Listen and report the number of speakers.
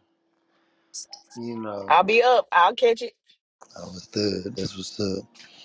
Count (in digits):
2